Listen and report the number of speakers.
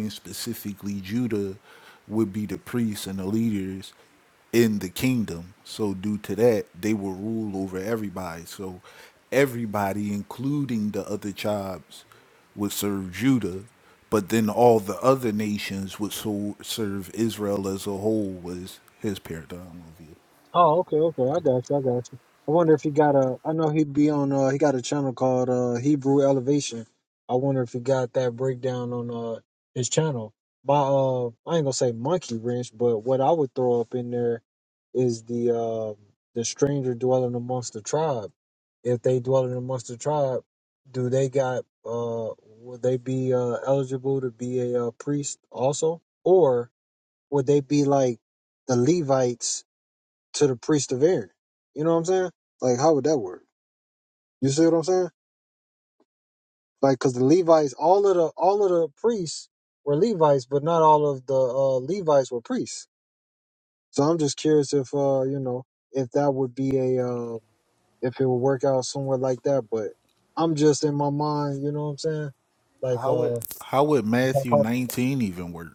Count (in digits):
2